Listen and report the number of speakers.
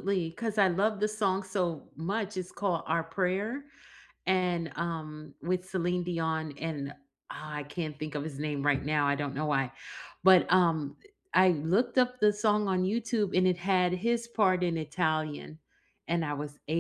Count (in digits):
1